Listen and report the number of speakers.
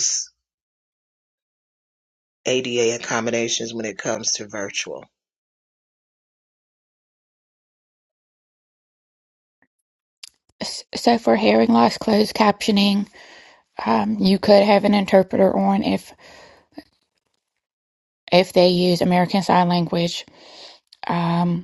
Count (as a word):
two